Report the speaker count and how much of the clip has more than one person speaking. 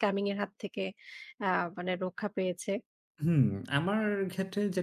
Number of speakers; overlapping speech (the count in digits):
2, no overlap